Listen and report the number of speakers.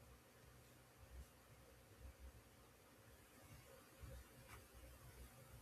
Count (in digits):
0